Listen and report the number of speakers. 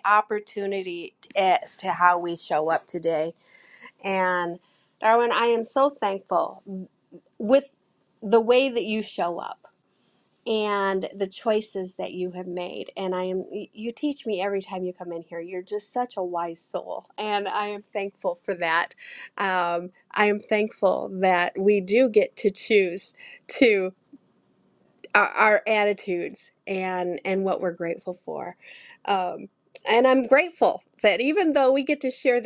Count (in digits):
1